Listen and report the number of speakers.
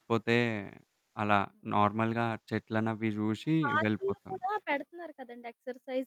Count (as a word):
two